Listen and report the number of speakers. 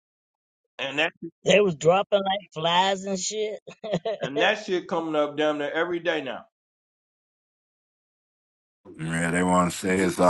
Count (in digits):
3